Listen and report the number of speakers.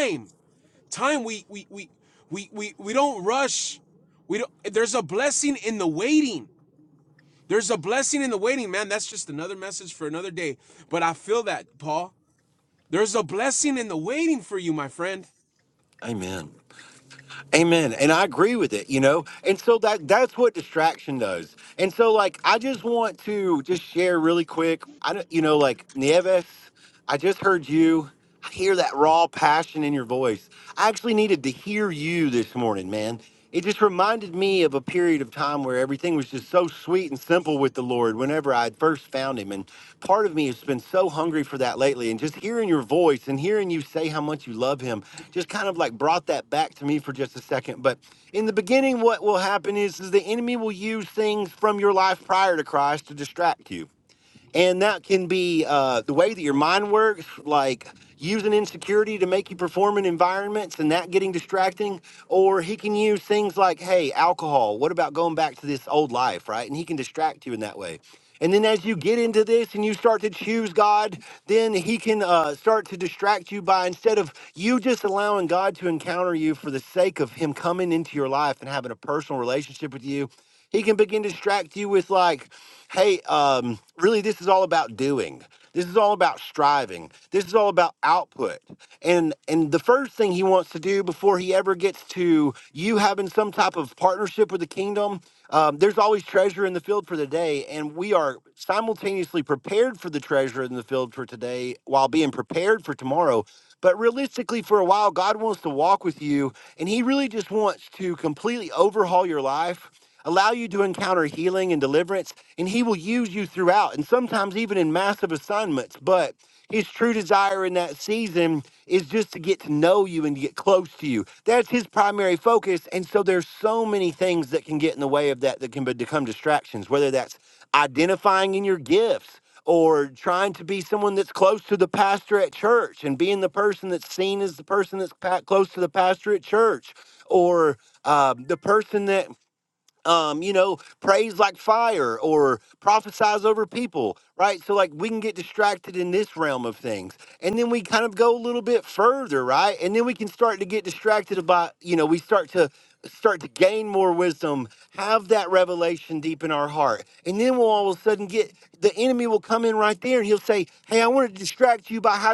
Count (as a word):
two